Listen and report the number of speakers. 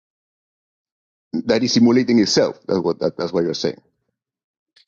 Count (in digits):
1